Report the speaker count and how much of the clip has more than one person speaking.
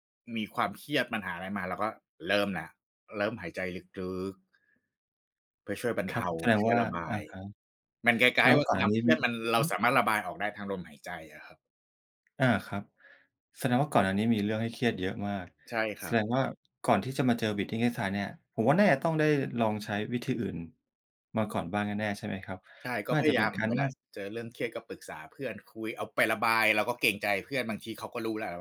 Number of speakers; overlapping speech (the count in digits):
2, about 10%